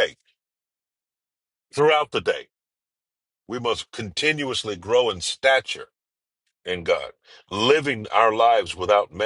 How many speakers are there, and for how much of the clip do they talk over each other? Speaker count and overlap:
one, no overlap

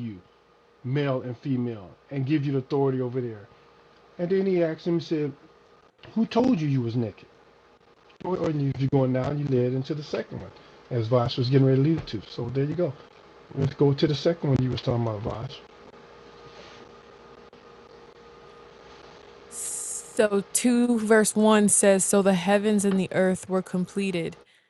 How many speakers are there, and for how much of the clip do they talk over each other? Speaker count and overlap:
two, no overlap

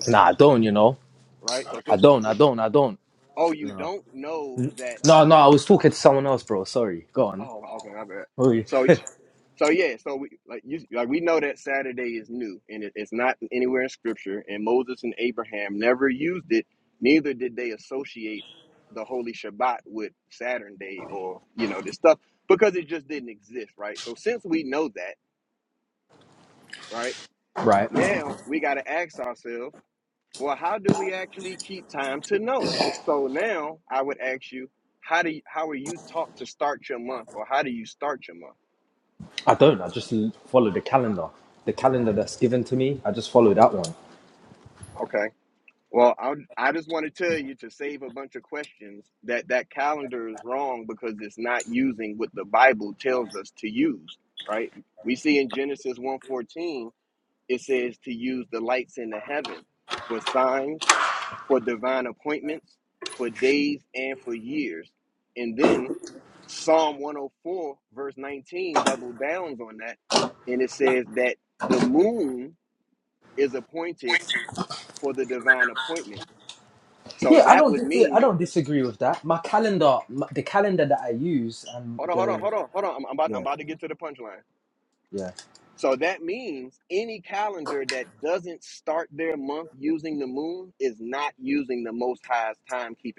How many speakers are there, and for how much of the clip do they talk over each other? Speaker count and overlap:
two, about 2%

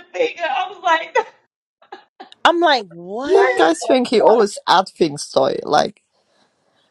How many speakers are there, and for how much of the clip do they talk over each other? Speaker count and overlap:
three, about 7%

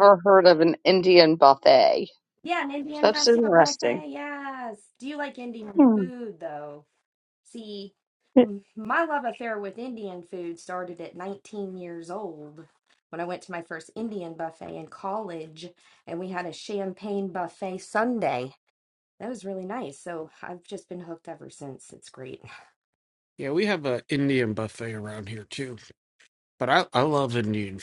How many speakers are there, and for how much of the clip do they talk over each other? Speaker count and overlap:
three, about 5%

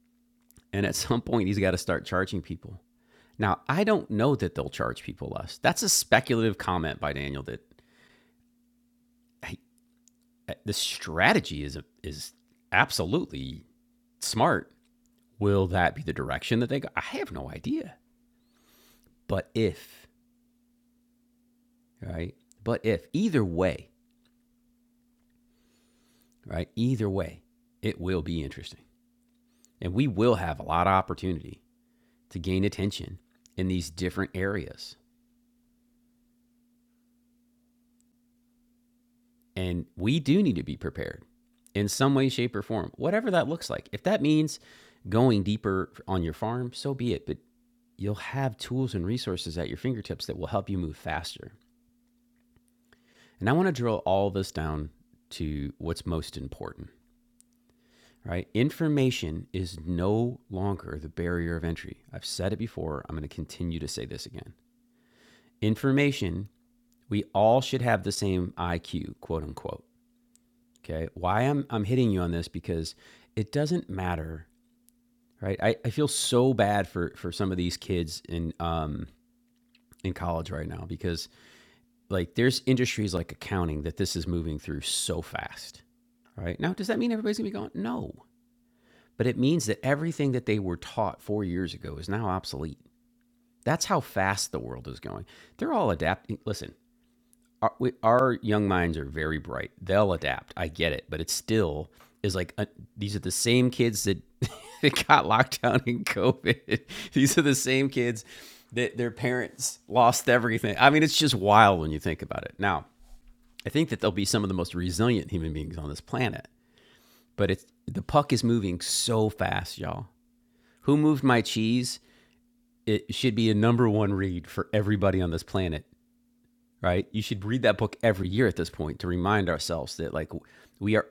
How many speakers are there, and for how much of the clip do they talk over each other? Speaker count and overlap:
one, no overlap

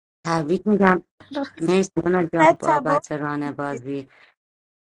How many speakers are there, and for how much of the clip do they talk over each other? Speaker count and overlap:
one, no overlap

